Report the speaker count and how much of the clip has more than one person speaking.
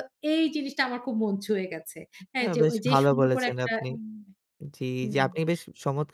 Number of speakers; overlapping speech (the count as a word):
two, about 28%